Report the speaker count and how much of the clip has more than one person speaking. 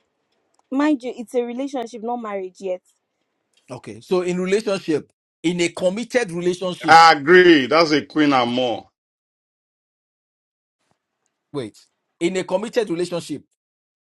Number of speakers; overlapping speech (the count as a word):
three, about 1%